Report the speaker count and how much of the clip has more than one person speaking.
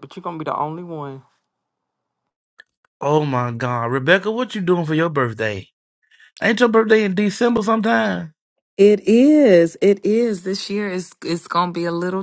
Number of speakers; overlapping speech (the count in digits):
3, no overlap